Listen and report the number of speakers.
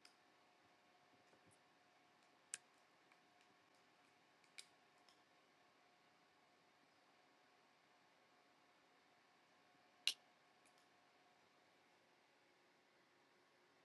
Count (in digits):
0